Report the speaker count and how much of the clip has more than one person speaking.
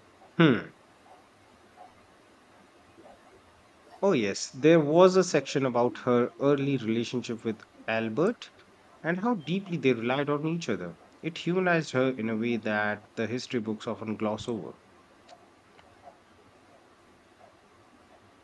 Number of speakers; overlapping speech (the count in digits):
1, no overlap